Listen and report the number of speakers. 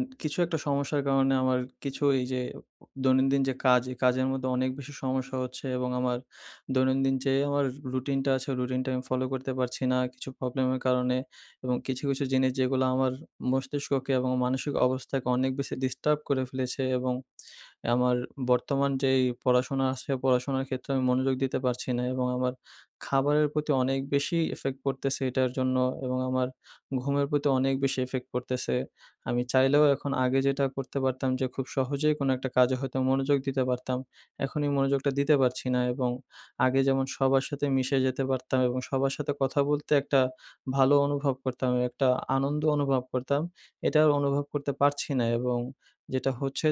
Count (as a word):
one